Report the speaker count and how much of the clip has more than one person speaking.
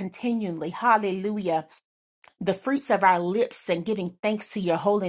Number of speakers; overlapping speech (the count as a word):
one, no overlap